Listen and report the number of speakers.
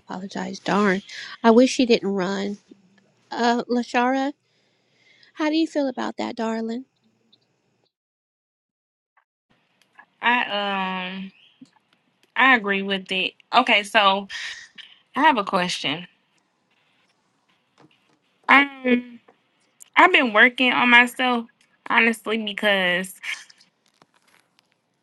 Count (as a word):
two